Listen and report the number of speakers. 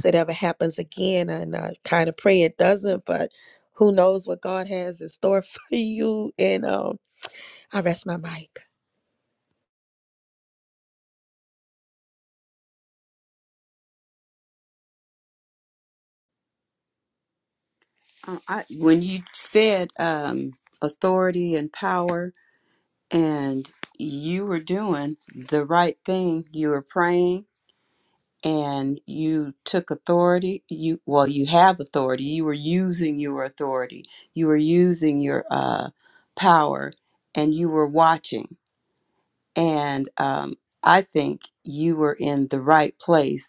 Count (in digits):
2